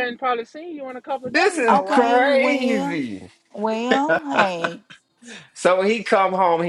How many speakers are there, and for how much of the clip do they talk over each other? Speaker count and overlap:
3, about 25%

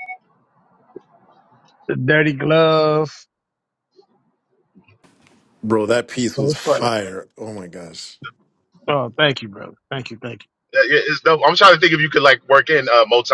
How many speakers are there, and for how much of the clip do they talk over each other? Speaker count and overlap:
3, about 4%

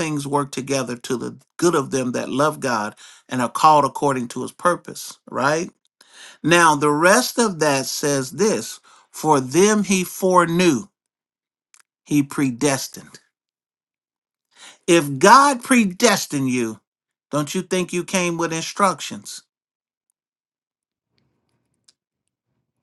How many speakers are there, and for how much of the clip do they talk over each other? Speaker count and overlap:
1, no overlap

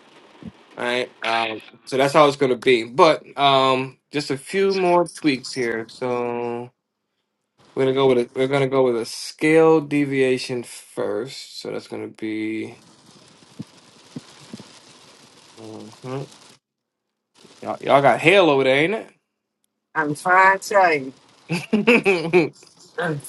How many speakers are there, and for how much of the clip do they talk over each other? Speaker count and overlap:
2, no overlap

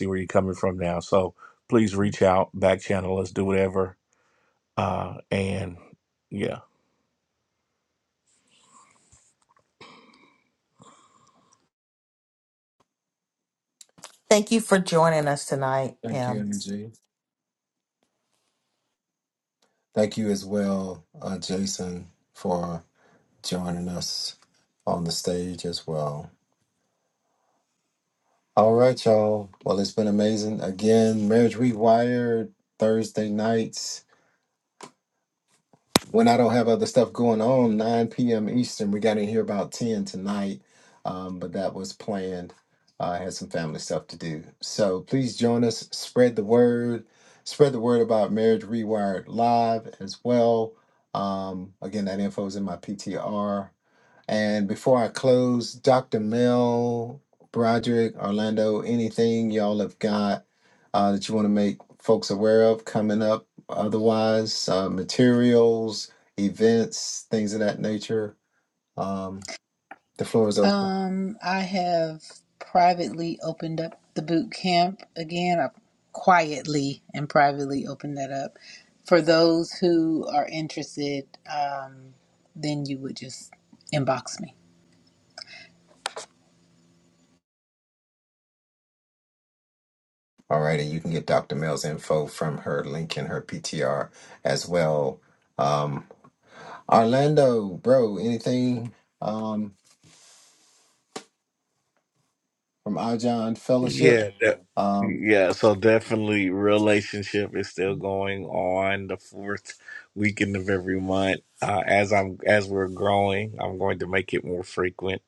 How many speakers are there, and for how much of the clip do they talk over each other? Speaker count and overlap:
4, about 1%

